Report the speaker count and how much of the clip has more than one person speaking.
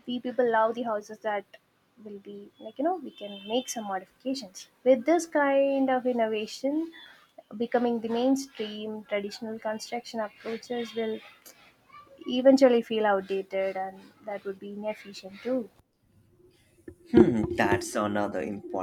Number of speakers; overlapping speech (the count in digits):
2, no overlap